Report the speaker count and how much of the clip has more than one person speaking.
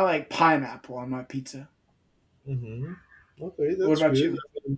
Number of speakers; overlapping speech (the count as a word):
two, about 11%